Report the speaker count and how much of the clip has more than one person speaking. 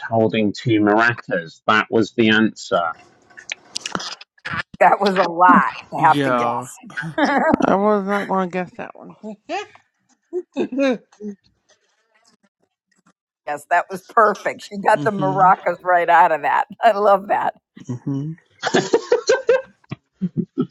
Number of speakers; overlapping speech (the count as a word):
four, about 6%